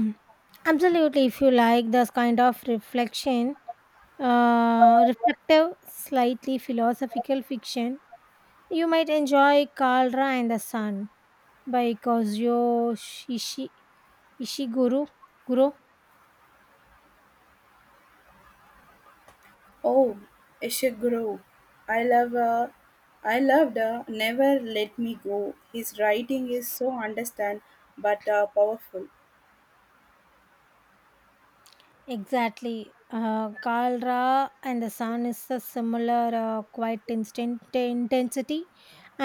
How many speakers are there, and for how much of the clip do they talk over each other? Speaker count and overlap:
2, no overlap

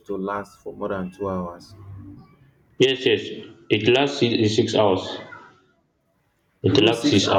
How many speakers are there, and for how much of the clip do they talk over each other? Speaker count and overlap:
2, about 9%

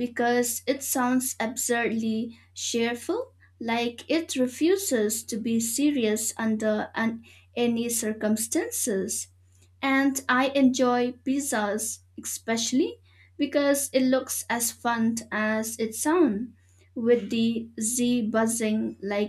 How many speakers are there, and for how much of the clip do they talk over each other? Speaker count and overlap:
1, no overlap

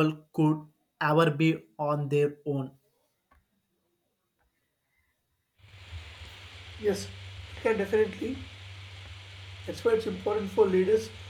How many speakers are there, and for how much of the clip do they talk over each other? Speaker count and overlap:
2, no overlap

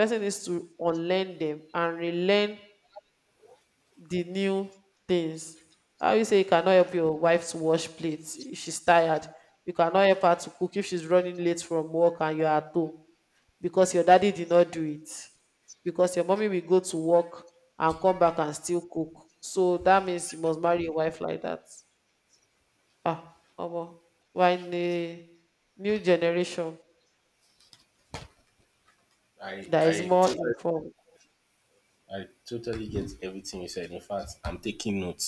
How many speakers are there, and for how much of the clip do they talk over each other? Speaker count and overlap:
2, about 2%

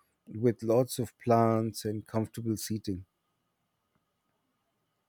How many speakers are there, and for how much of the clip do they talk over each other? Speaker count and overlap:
1, no overlap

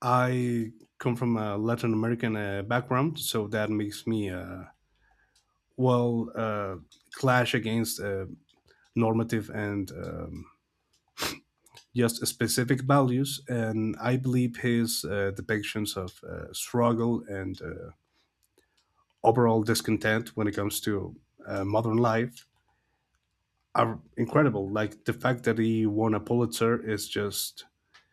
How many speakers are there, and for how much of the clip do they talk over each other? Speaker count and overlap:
1, no overlap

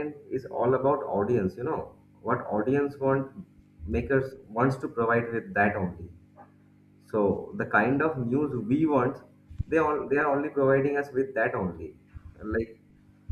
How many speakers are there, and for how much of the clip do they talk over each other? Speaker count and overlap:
1, no overlap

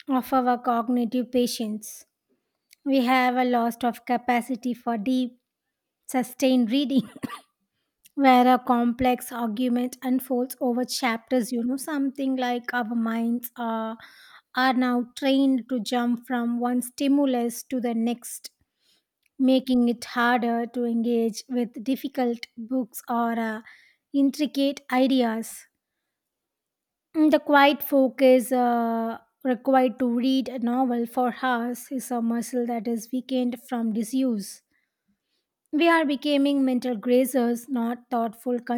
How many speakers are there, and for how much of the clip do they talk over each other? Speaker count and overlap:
1, no overlap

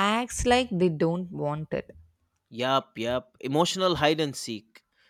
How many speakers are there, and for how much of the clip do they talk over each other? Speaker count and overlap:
2, no overlap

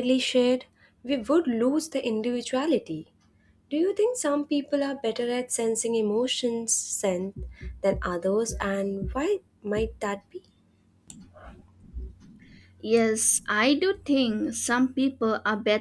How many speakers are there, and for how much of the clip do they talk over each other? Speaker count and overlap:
2, no overlap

